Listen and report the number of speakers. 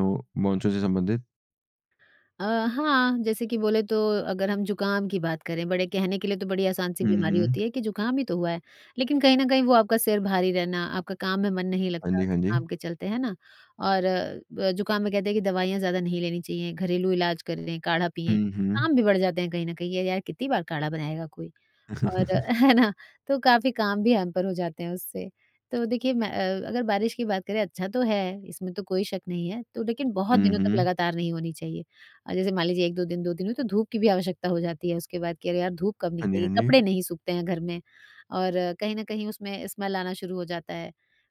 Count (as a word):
two